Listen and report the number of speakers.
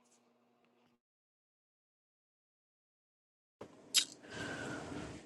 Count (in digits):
0